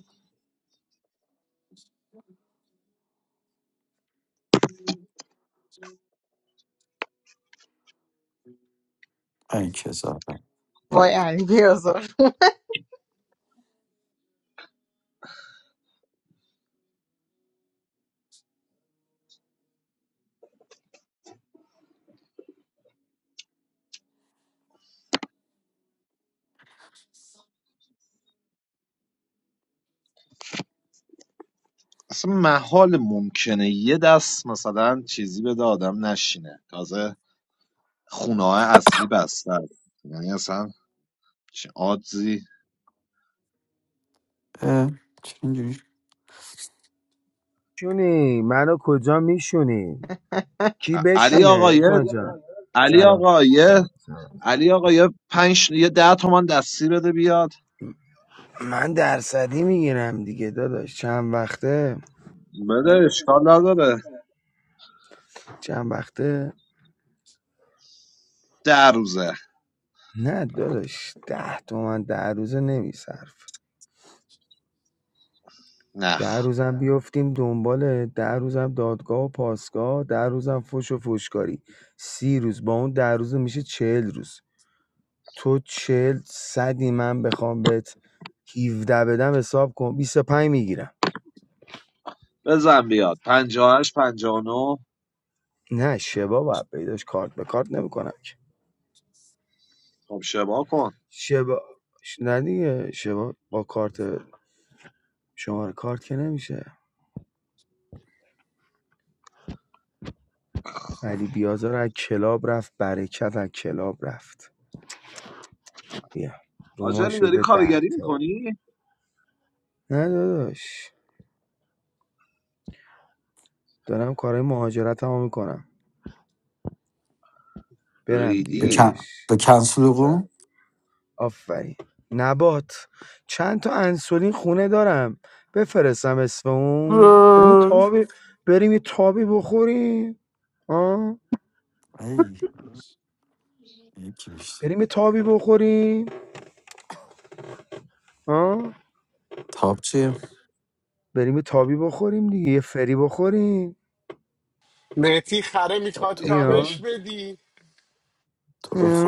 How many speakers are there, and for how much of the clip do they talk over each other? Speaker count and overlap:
5, about 4%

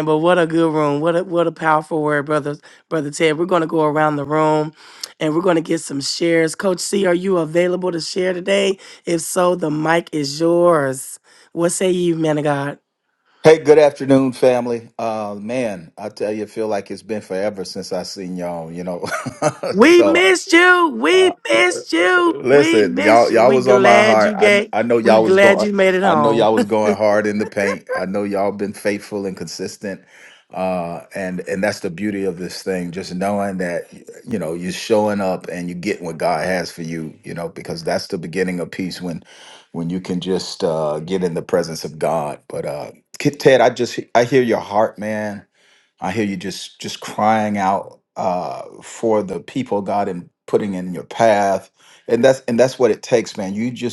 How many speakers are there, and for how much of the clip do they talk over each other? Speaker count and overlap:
2, about 8%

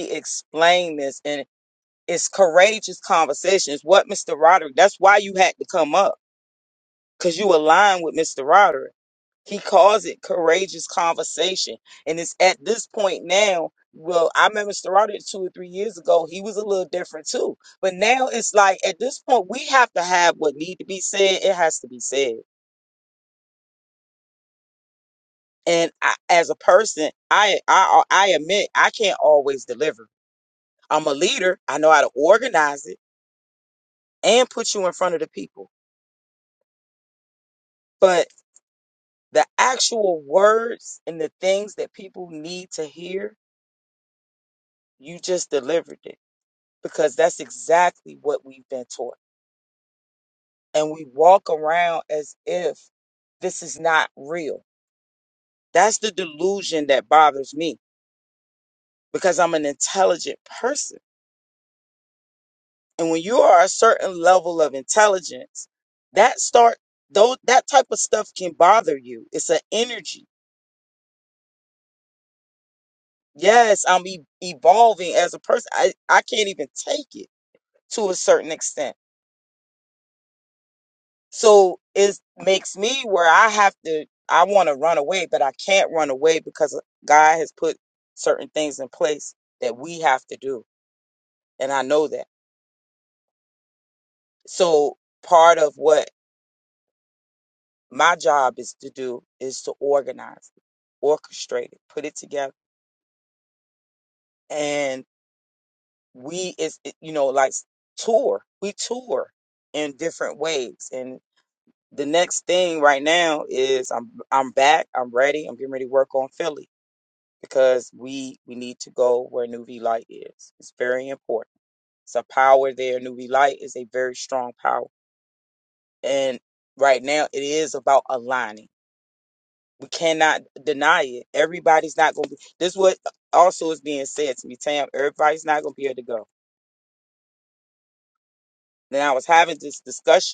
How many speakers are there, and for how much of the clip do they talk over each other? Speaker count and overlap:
1, no overlap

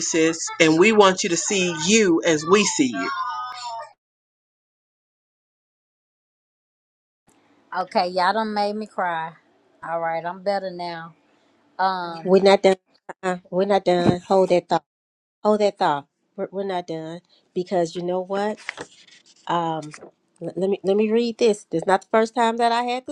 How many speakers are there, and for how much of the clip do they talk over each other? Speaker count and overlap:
3, under 1%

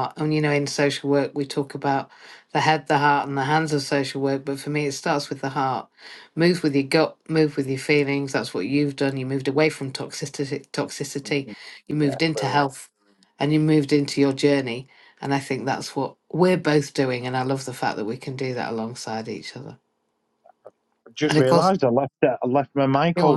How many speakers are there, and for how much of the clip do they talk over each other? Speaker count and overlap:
2, about 4%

